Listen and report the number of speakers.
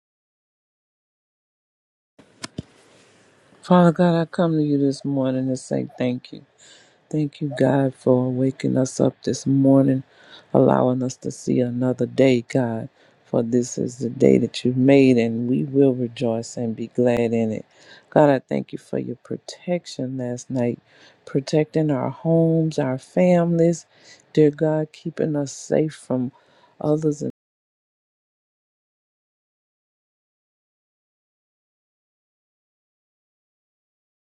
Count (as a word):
one